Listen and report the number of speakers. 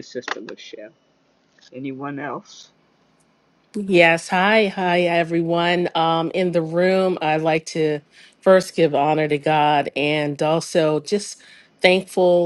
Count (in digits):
2